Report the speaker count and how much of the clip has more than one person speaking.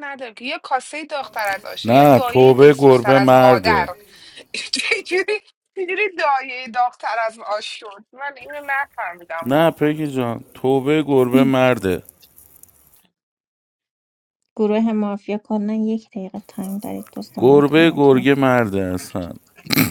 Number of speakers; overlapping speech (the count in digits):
3, about 17%